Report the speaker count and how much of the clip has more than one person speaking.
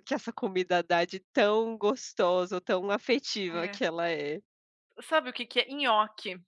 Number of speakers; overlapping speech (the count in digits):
2, about 4%